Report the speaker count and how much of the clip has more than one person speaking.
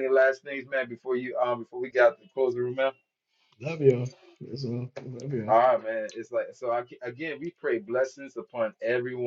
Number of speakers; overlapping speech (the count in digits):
2, under 1%